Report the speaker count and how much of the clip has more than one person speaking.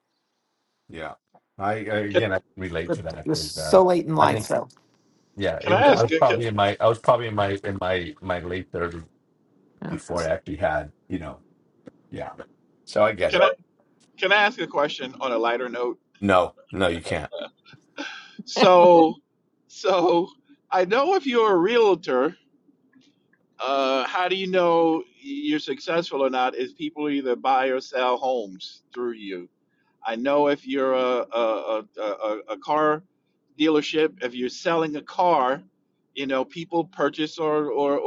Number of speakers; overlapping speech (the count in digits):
3, about 5%